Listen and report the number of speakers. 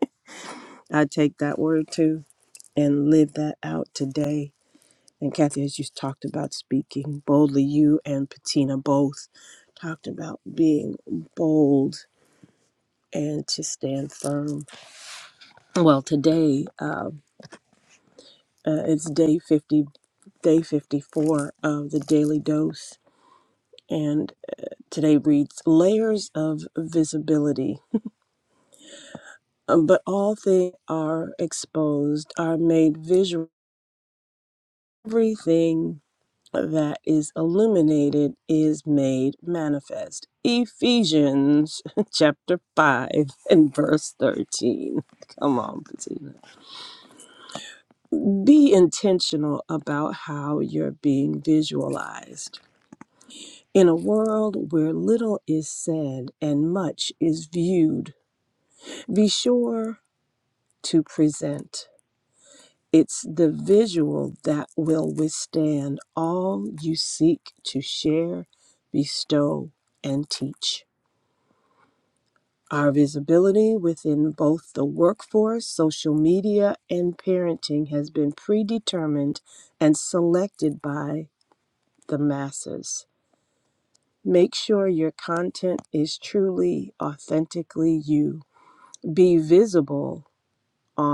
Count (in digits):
1